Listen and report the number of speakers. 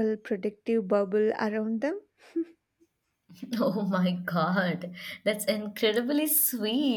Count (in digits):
2